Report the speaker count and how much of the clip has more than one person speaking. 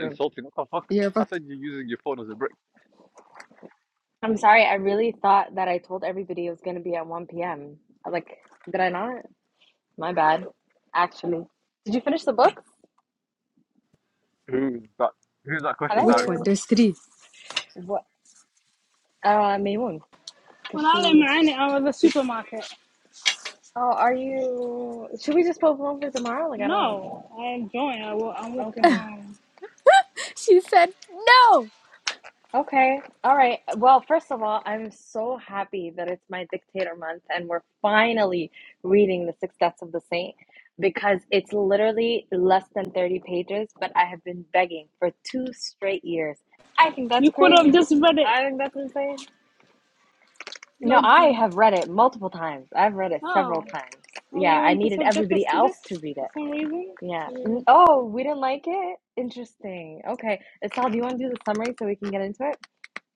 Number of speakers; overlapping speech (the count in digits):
4, about 10%